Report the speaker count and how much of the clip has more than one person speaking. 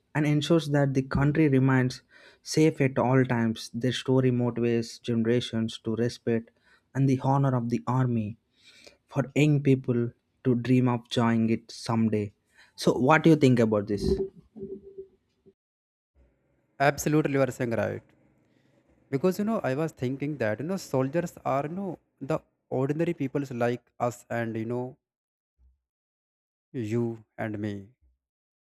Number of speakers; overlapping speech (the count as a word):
two, no overlap